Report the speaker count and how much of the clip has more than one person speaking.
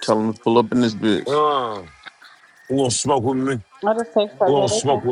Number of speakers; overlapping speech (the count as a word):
three, about 15%